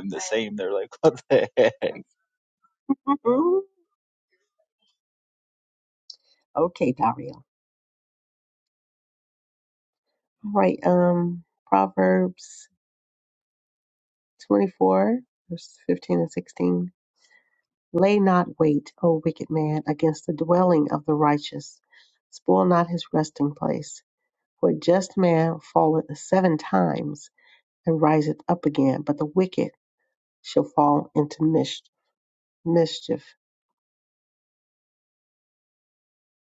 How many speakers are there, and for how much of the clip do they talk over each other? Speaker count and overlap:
two, no overlap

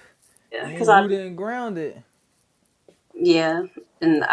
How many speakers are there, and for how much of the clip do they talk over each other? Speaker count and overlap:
two, about 11%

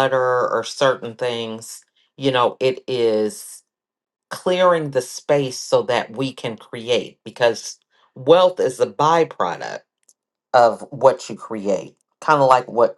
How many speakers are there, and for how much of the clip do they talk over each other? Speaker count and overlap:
one, no overlap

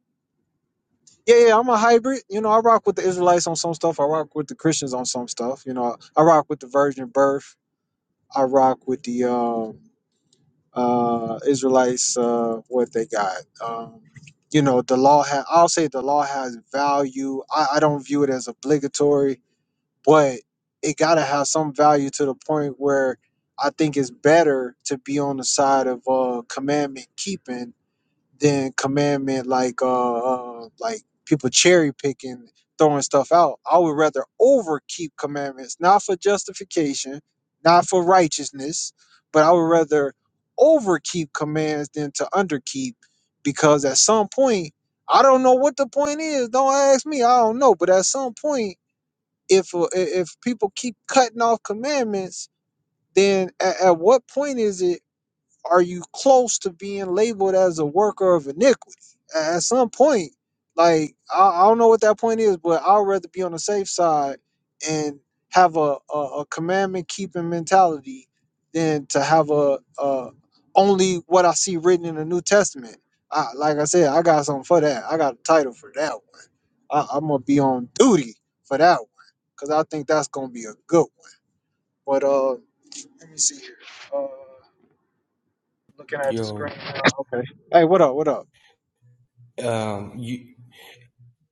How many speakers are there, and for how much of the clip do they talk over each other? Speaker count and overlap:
two, under 1%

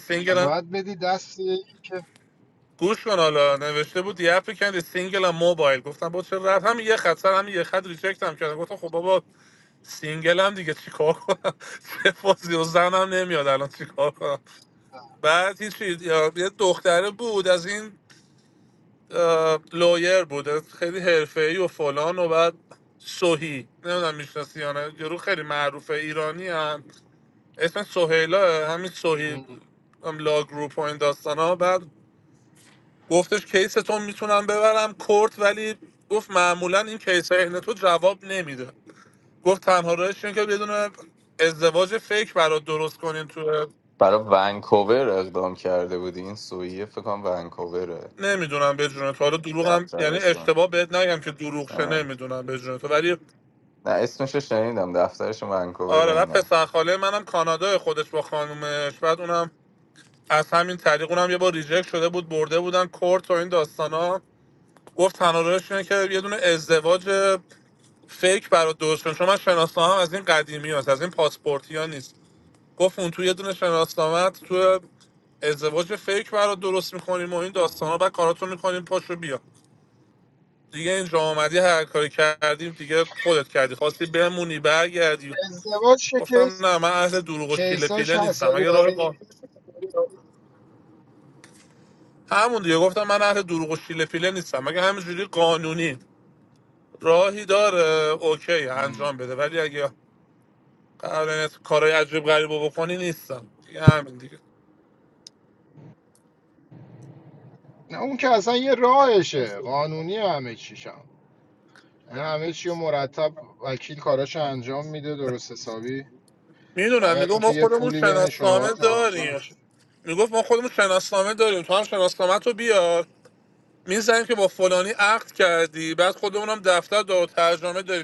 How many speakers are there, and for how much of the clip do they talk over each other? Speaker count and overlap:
three, about 5%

